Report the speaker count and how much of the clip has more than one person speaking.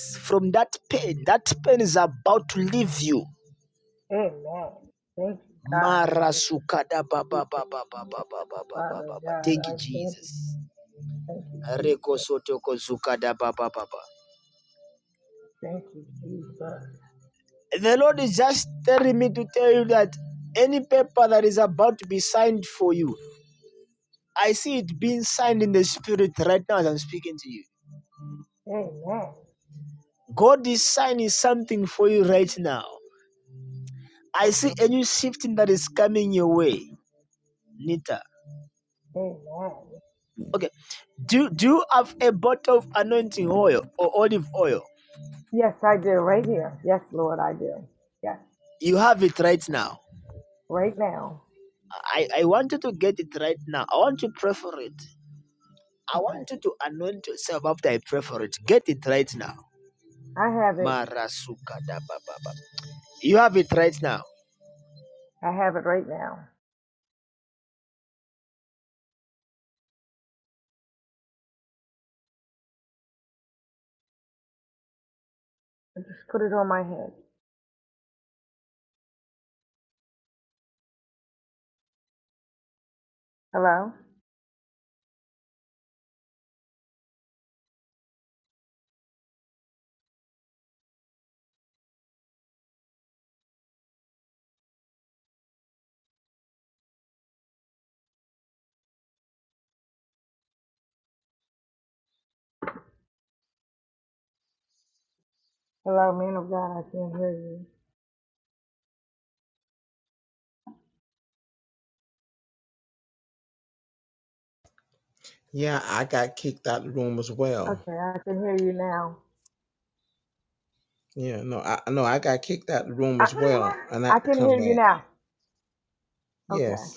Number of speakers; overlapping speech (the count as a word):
three, about 3%